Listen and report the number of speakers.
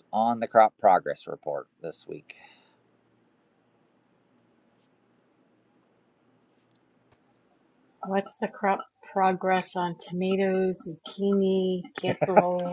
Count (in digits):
2